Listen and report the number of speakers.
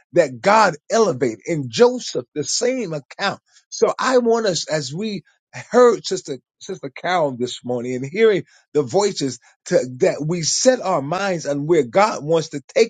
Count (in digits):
1